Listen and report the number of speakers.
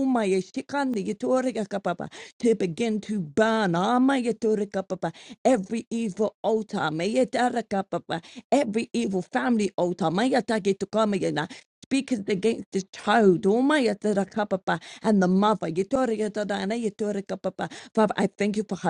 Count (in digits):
1